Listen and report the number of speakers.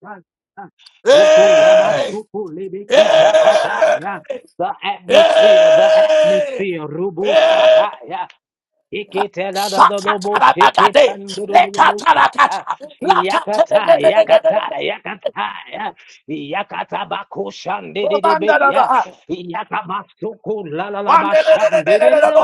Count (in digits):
2